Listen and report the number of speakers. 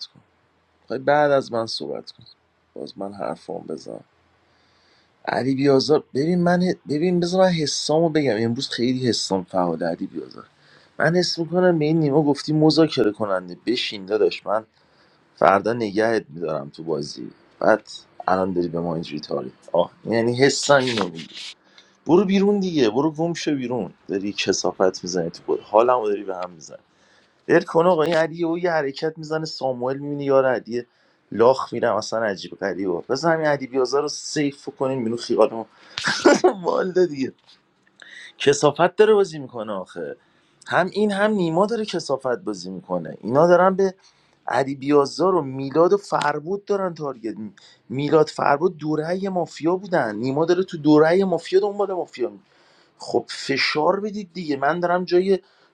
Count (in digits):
1